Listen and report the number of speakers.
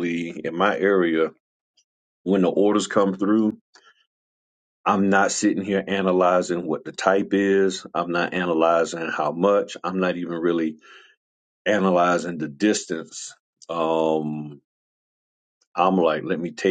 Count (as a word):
one